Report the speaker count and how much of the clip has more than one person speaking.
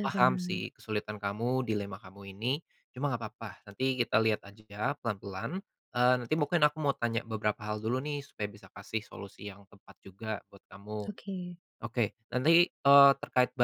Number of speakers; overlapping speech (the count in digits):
2, about 5%